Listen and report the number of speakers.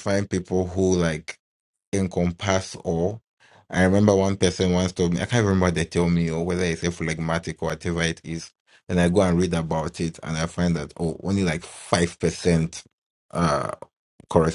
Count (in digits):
1